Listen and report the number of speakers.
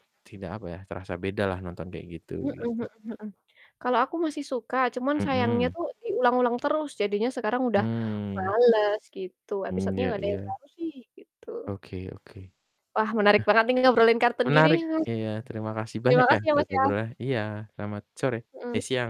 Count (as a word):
two